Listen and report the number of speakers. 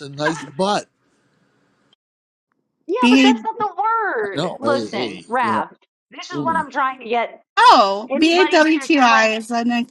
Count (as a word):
three